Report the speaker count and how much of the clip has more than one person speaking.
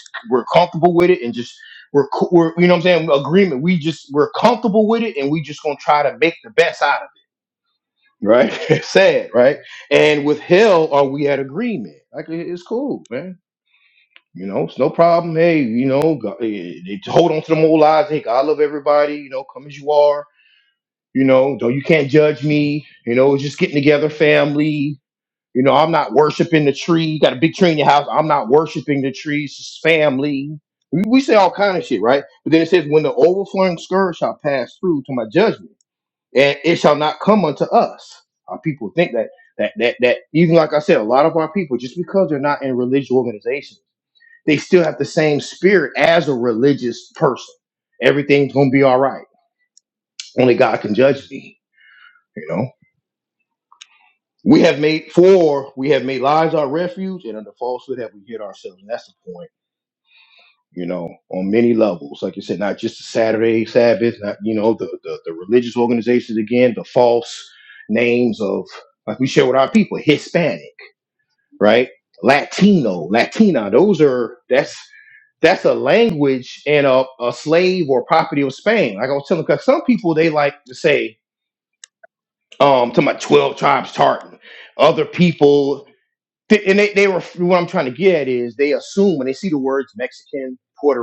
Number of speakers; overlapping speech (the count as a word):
one, no overlap